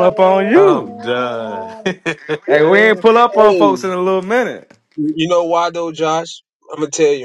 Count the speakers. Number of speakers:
3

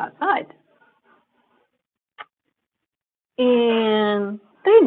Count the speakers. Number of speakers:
1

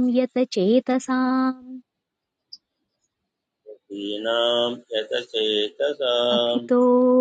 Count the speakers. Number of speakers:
2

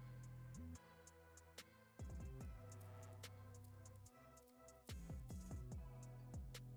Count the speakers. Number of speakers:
0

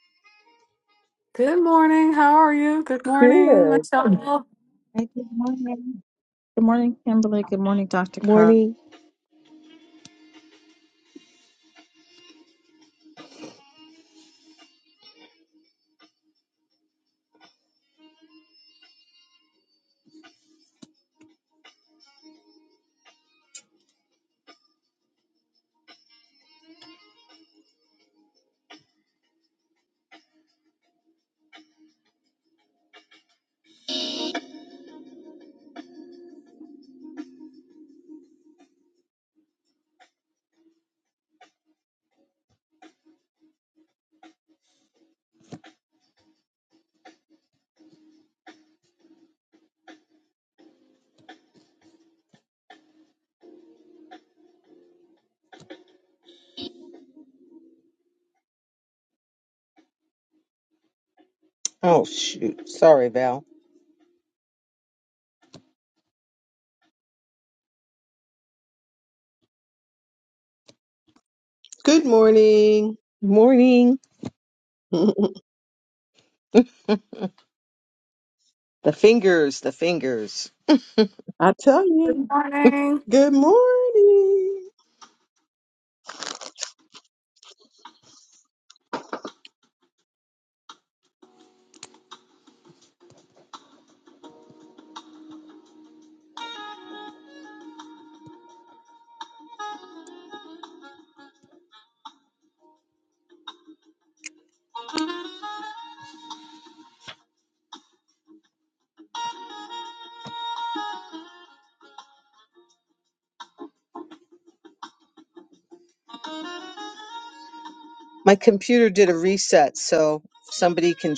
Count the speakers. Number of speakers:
4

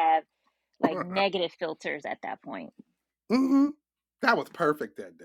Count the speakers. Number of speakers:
2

